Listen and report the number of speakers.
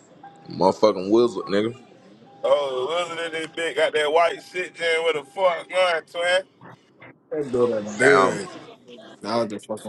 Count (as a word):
three